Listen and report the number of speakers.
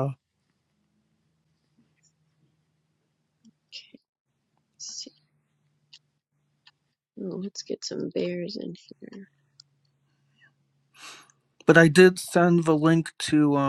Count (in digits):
2